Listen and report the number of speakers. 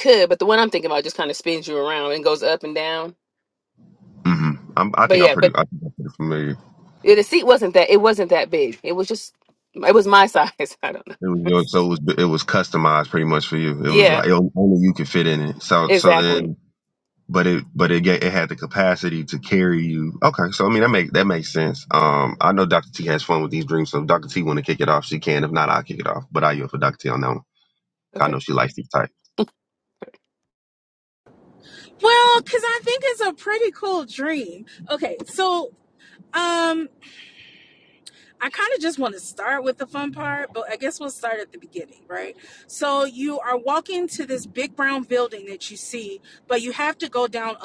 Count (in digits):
3